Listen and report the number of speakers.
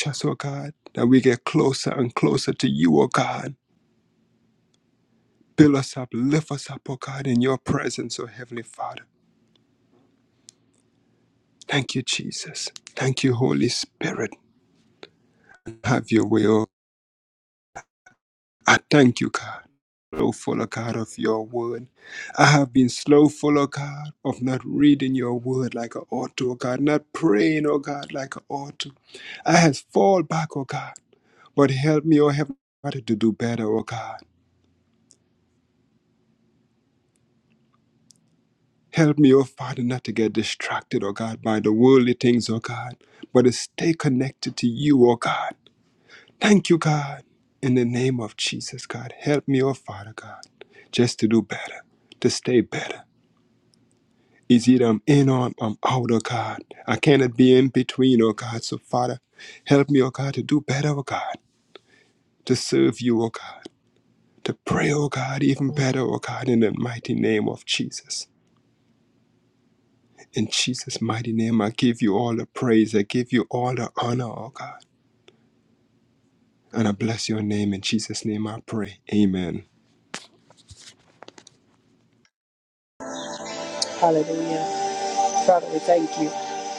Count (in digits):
2